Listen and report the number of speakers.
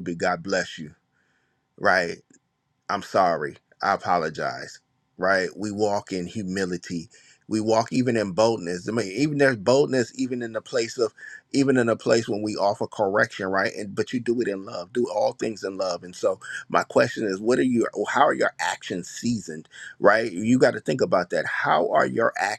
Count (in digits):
1